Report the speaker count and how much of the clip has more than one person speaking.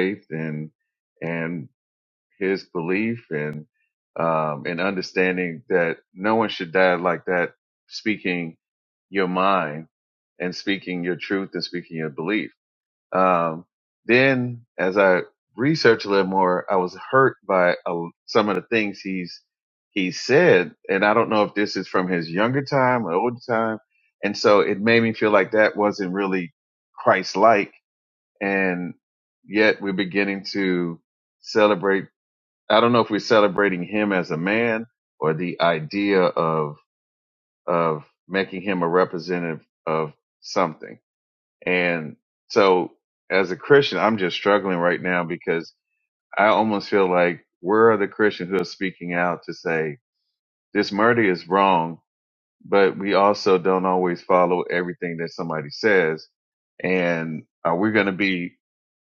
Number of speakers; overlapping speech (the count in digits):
1, no overlap